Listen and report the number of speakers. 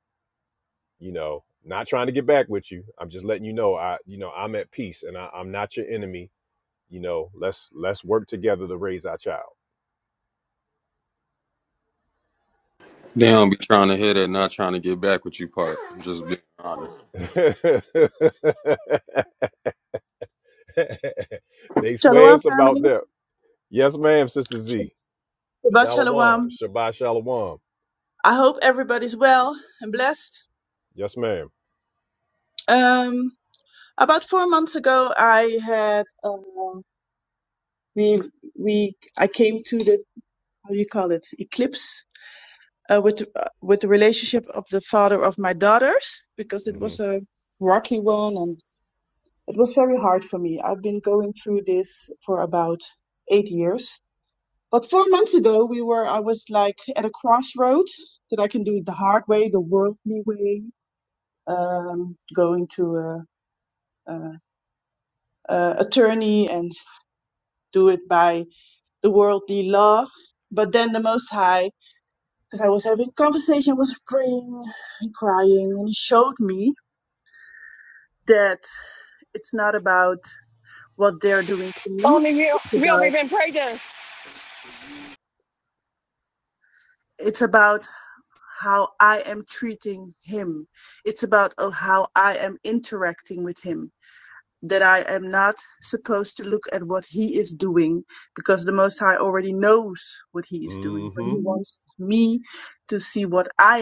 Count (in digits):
4